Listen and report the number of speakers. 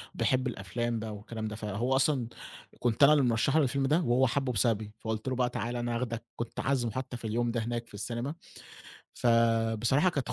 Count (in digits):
1